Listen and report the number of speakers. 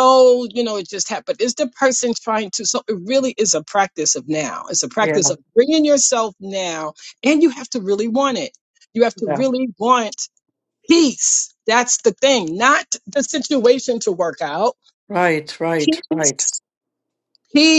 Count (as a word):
two